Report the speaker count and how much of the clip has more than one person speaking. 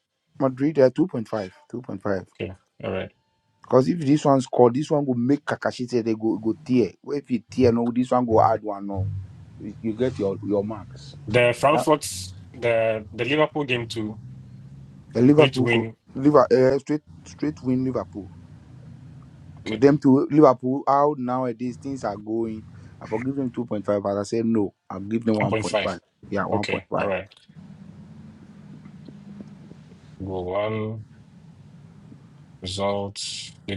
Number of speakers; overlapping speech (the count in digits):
2, about 5%